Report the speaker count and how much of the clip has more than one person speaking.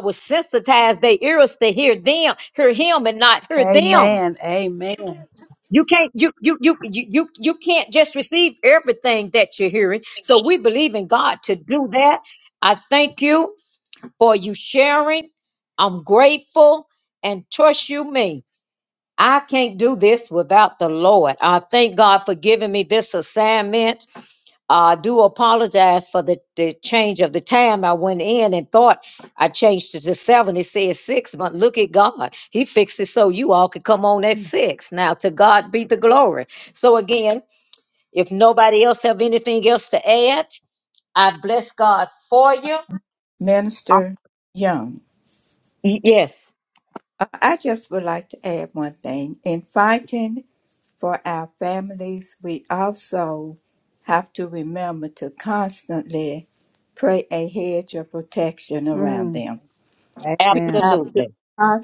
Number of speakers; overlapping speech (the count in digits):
3, about 3%